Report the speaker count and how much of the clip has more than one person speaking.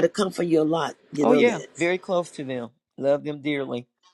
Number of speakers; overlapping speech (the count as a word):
two, about 11%